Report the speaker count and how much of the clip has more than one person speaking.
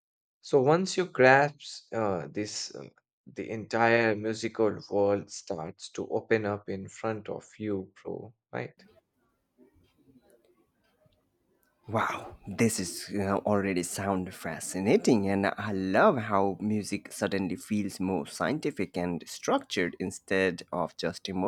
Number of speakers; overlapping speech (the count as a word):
two, no overlap